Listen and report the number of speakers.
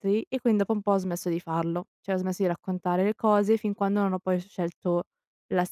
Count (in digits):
1